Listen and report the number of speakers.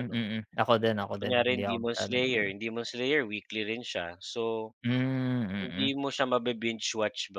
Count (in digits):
2